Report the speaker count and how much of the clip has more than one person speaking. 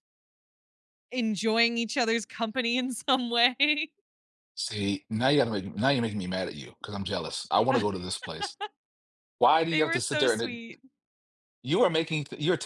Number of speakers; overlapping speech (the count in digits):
2, about 7%